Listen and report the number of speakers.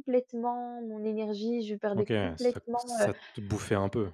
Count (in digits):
2